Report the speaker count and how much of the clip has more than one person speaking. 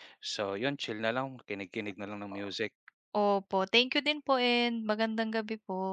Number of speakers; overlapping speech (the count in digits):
2, about 3%